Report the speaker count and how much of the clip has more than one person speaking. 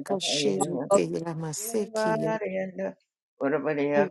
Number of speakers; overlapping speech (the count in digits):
2, about 42%